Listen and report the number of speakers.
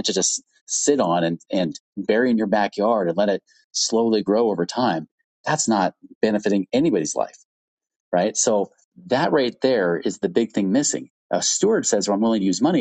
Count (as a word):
one